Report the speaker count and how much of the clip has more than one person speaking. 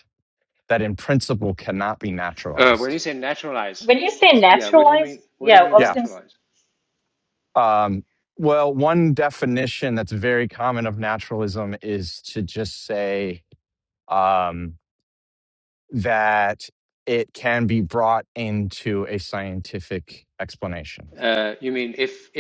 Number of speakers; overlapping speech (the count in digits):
3, about 6%